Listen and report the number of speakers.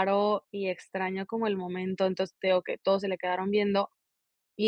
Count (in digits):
1